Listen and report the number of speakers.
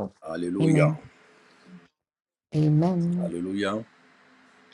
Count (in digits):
2